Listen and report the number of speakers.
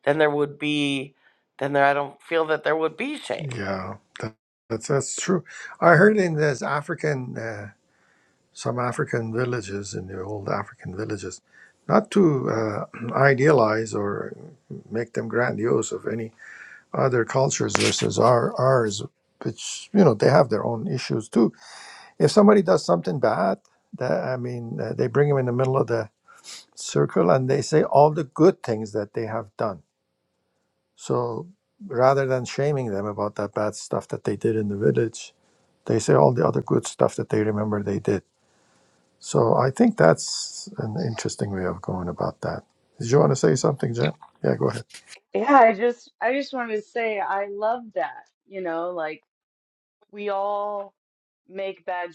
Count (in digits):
3